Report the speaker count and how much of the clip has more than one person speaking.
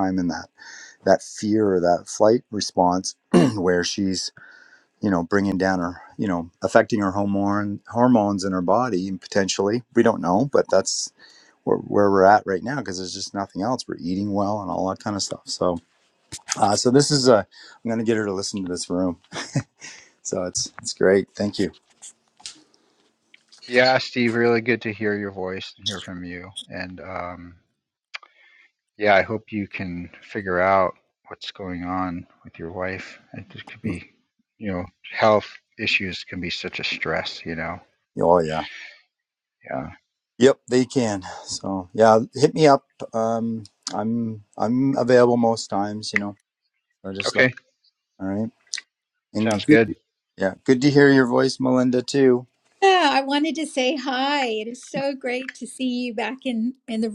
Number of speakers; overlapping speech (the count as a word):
three, about 1%